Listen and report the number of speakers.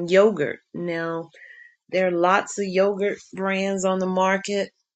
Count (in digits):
1